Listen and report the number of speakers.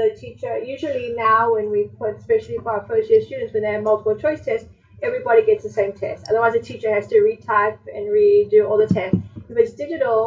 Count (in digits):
1